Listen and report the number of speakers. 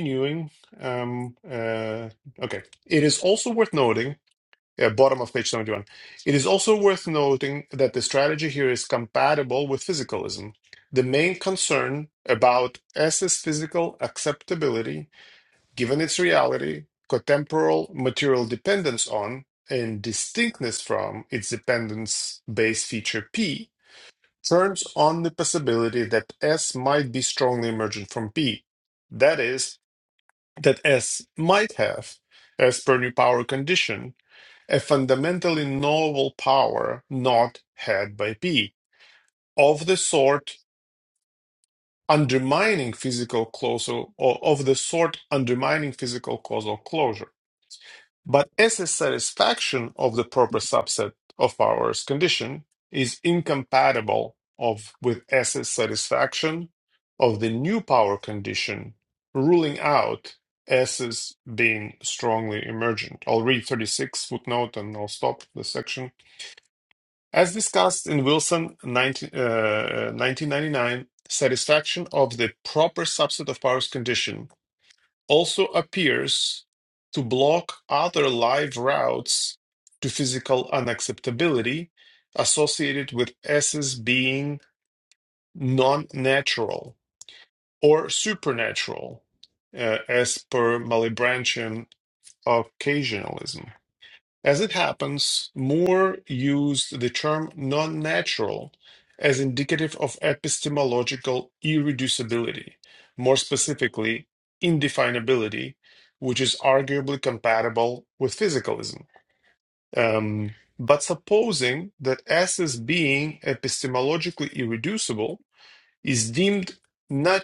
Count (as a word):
one